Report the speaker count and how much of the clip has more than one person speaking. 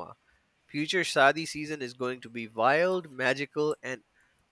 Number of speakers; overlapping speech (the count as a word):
one, no overlap